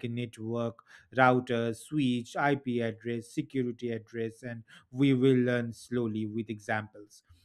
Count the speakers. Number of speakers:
one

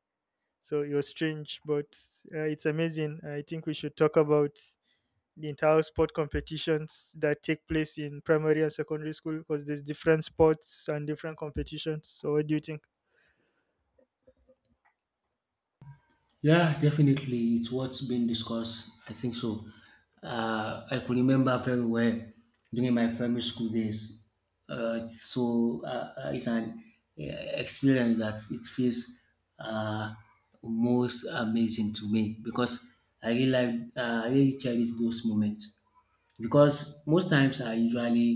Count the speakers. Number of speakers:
two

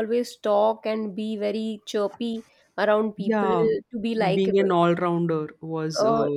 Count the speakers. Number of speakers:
two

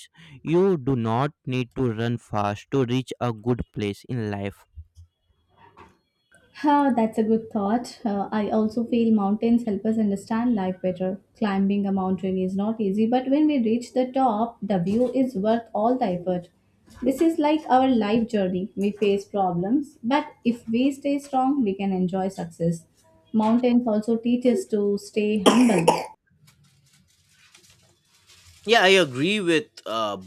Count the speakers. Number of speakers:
three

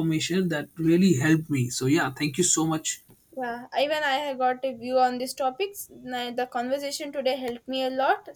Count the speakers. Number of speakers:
two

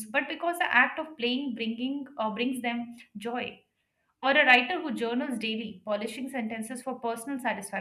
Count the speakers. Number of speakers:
one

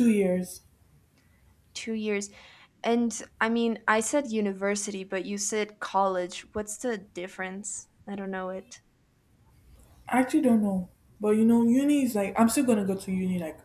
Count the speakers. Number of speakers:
two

